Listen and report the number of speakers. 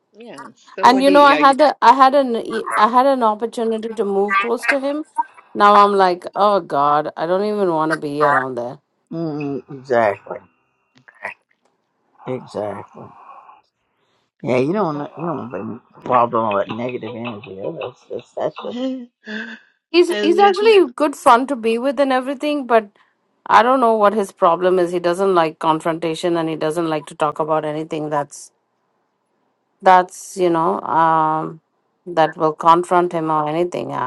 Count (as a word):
three